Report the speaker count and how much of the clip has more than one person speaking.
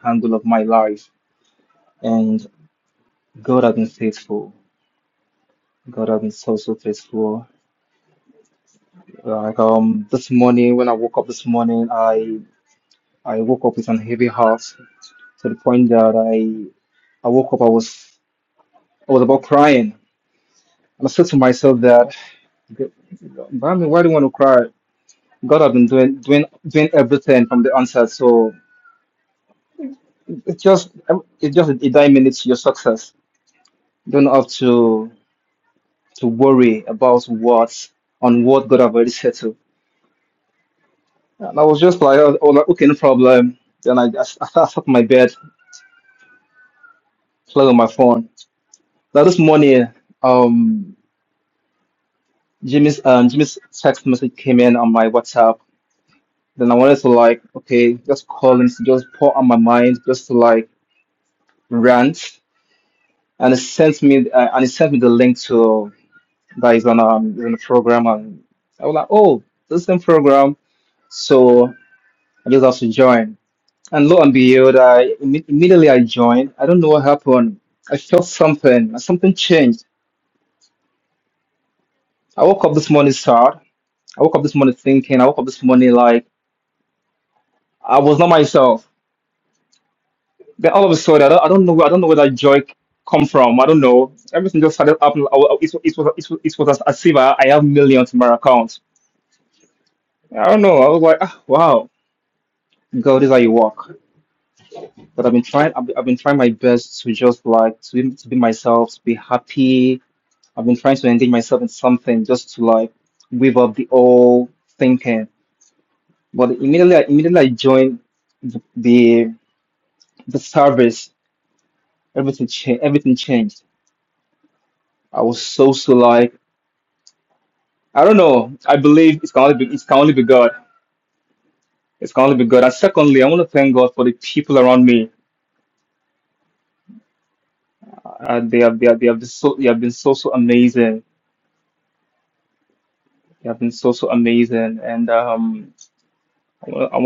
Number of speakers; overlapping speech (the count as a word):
one, no overlap